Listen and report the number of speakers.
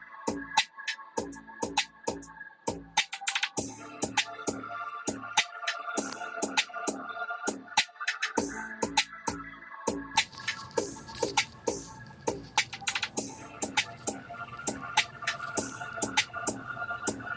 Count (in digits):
0